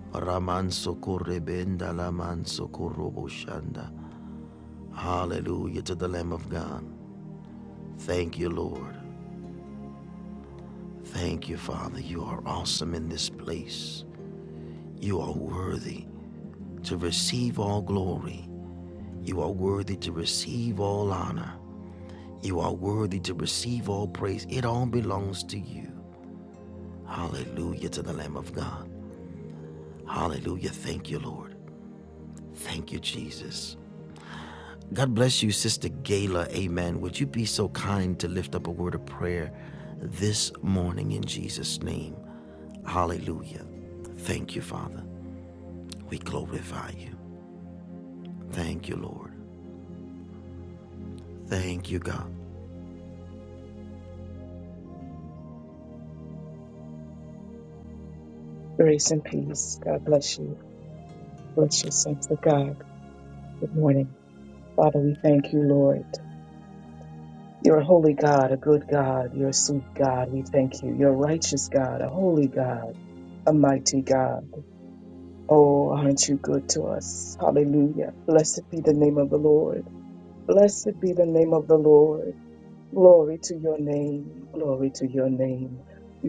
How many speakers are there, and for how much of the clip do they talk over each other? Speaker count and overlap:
2, no overlap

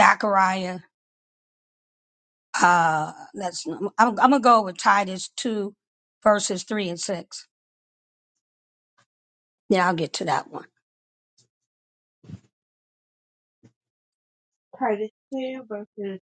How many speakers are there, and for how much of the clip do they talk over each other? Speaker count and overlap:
2, no overlap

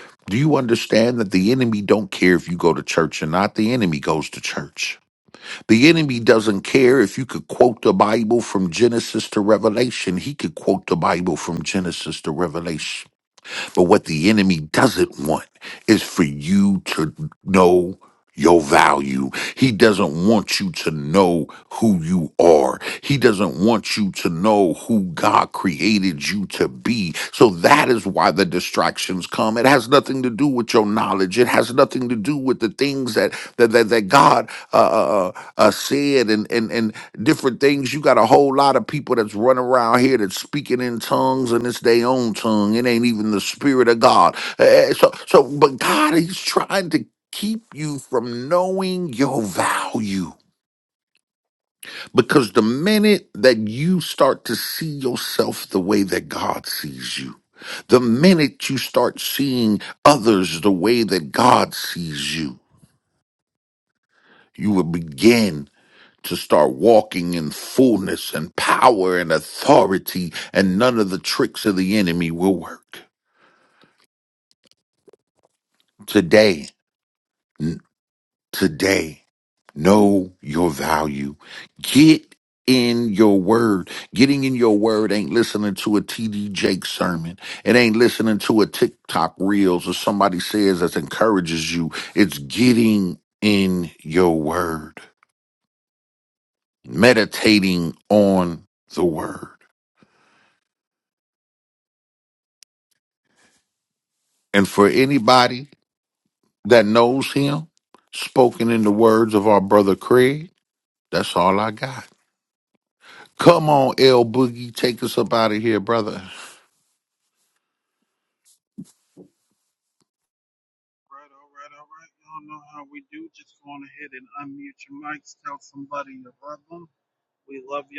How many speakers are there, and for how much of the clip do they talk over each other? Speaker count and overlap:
2, no overlap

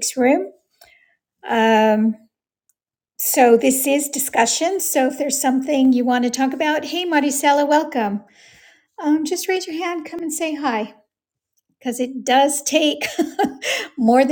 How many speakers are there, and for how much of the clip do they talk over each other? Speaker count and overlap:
1, no overlap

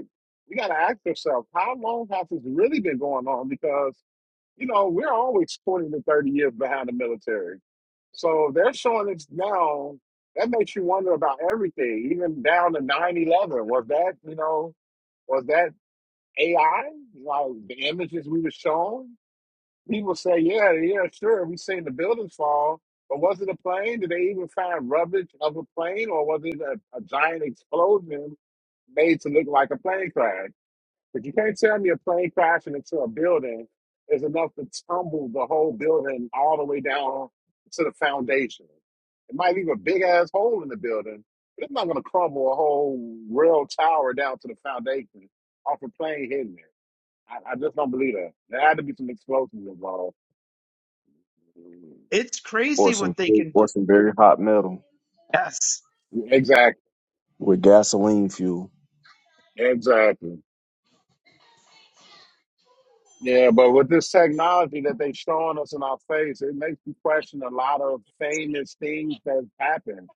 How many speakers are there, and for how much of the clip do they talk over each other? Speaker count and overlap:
3, about 1%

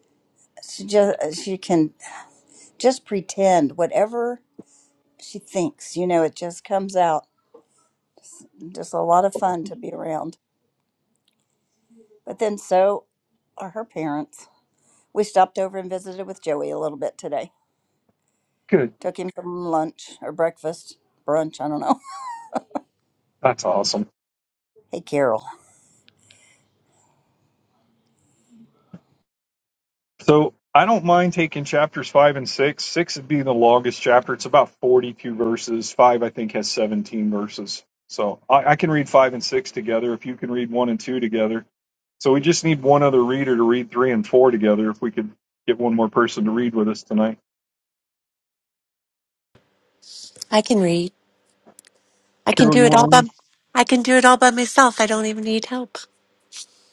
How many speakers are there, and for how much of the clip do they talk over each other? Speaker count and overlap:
3, about 1%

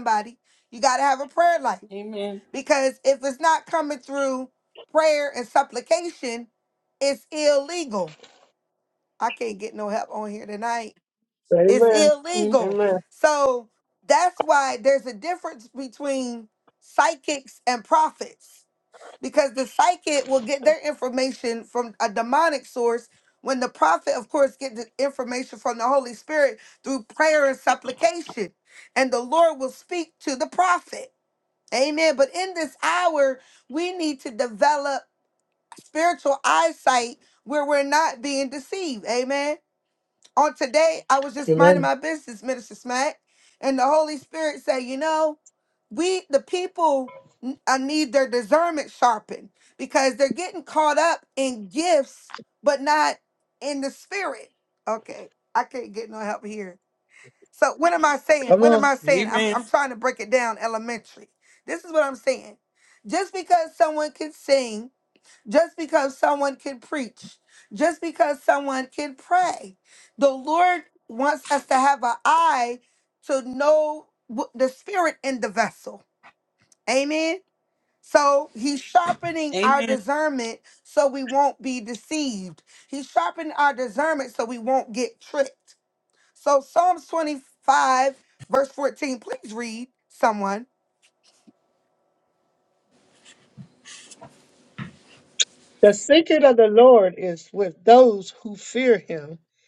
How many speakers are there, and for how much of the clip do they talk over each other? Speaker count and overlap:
3, about 3%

